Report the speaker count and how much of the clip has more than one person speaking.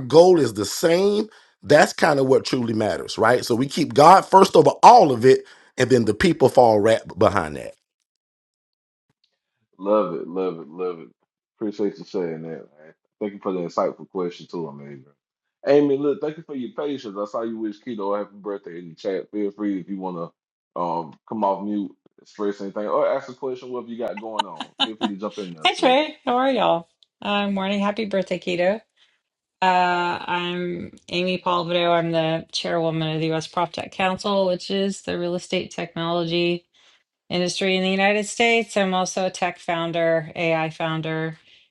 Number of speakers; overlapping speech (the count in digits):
3, about 1%